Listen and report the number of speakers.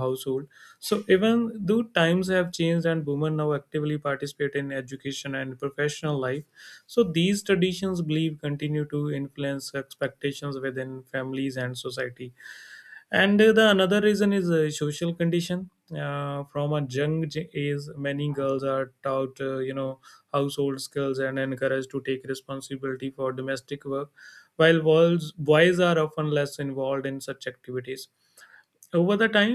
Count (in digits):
1